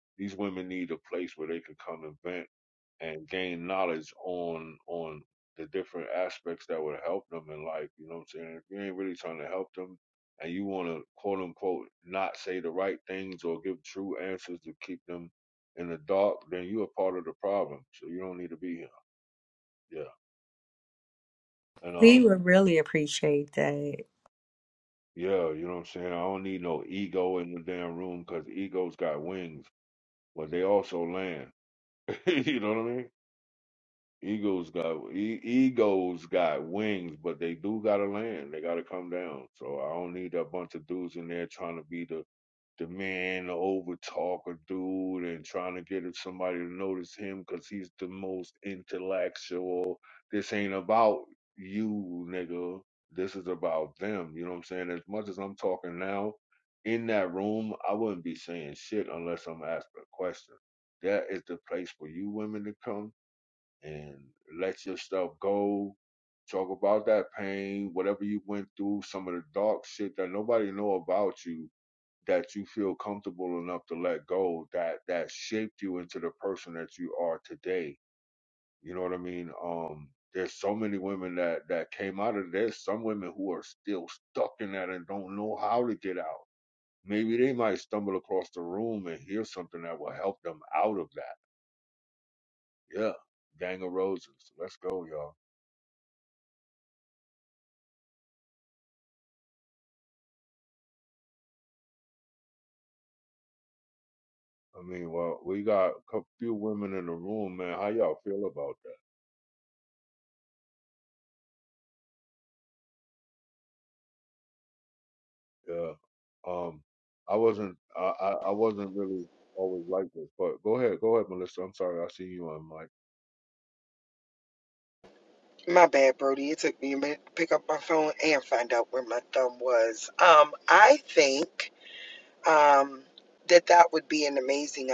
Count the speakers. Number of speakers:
3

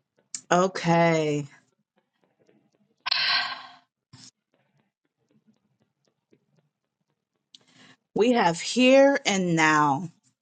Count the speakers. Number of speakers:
1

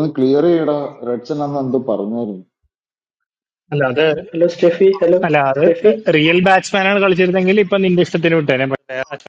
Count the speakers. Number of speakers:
3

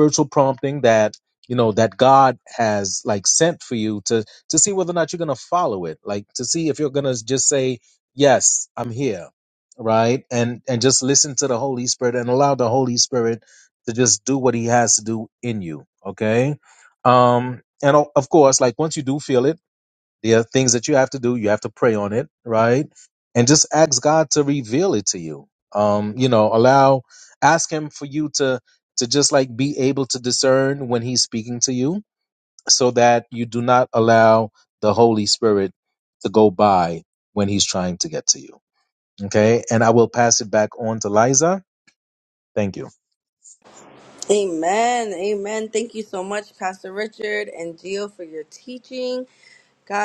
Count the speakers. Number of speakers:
2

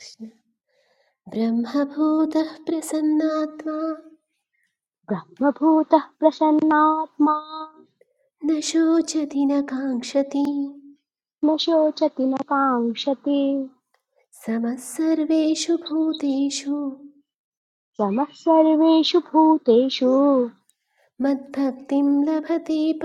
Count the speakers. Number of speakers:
2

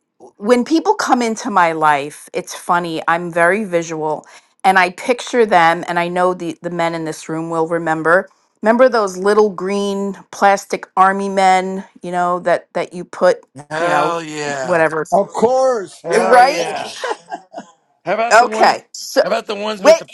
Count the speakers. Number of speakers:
3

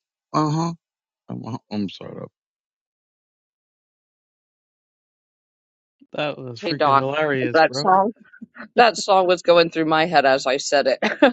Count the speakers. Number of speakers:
3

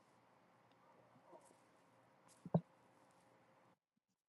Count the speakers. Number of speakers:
0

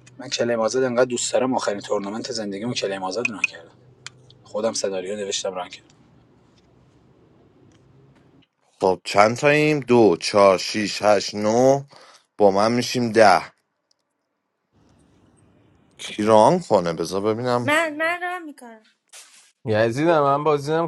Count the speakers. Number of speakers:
4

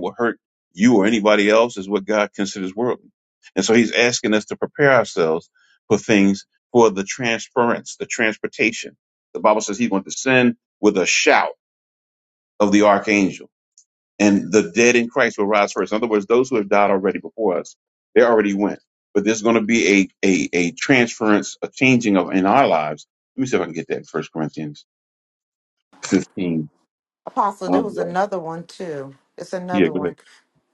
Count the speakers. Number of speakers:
2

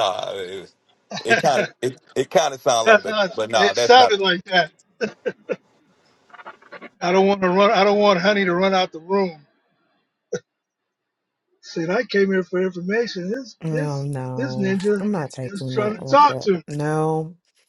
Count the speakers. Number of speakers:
3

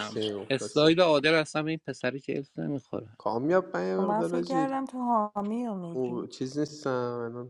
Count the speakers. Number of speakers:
3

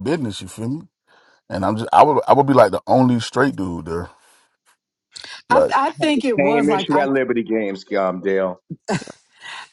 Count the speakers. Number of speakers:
3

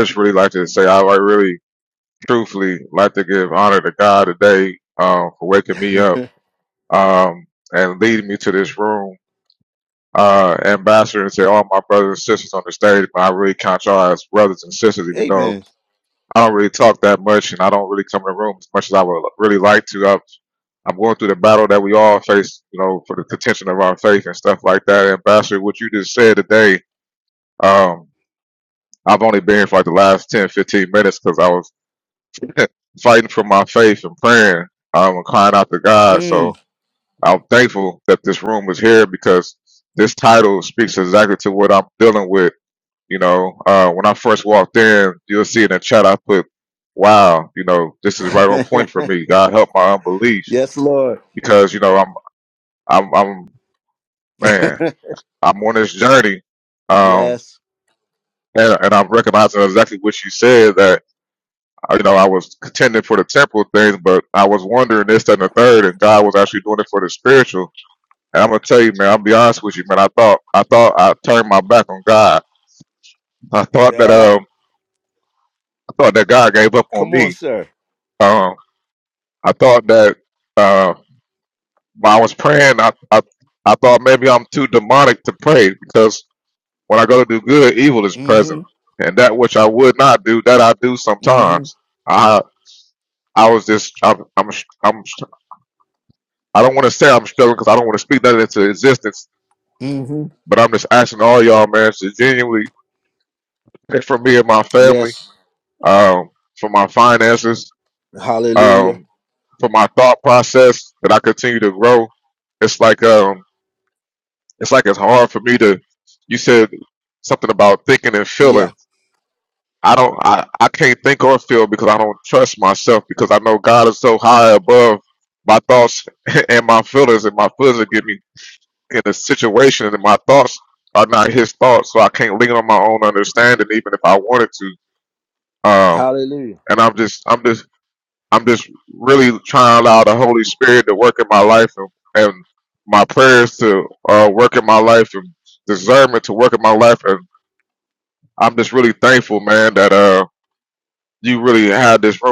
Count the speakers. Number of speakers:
2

